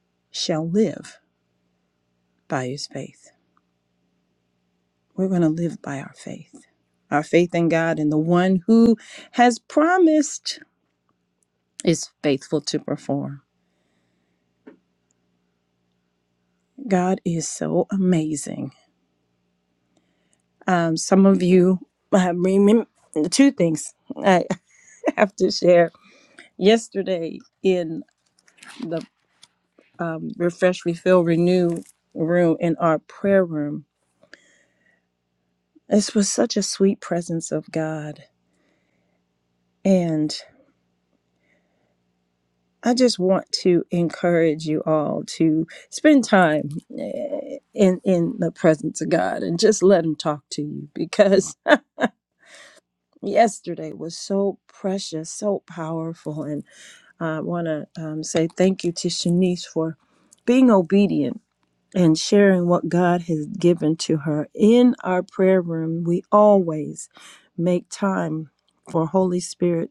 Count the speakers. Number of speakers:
1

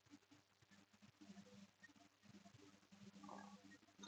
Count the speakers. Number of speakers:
0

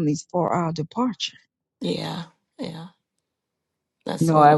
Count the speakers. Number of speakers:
2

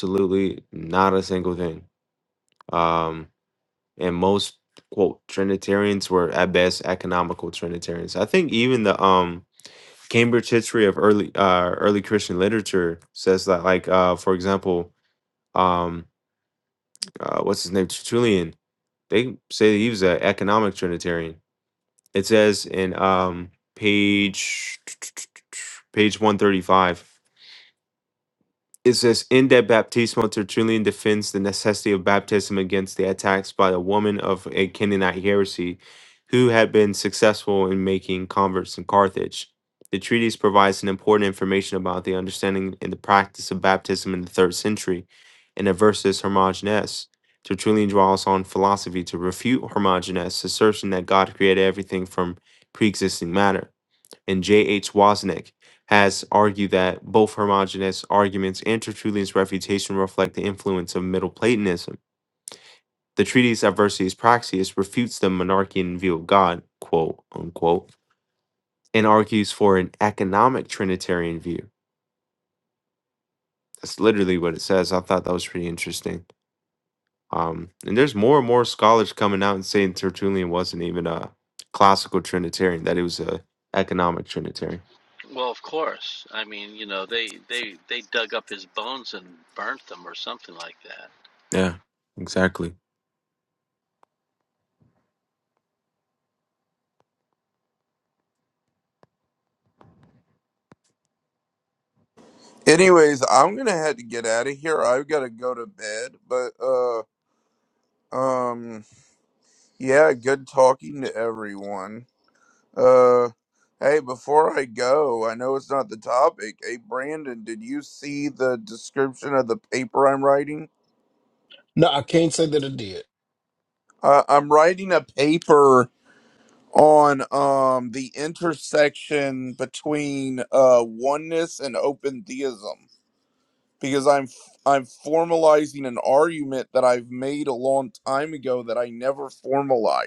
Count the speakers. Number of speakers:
4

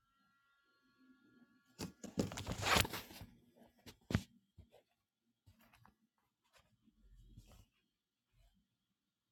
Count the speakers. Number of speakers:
0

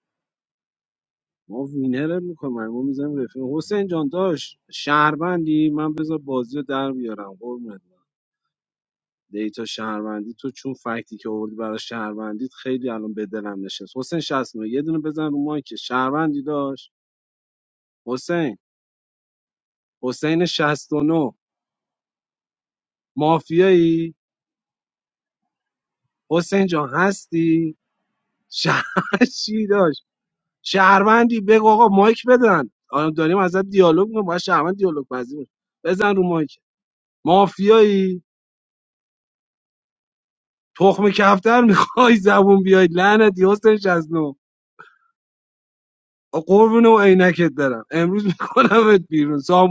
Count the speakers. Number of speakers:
1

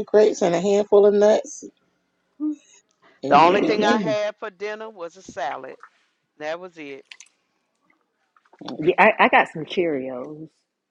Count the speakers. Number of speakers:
3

